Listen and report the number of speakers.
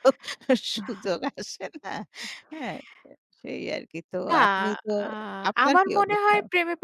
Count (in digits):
2